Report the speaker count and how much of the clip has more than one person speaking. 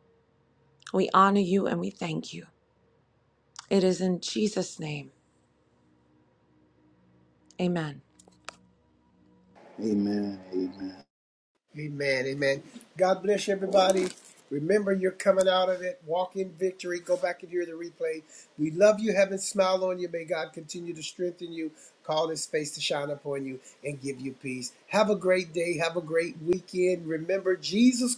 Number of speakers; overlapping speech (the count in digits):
3, no overlap